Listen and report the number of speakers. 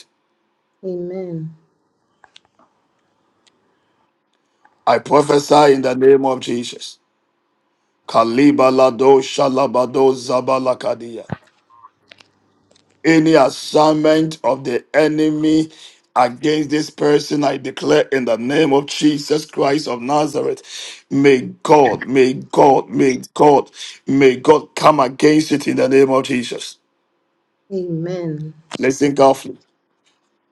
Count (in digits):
2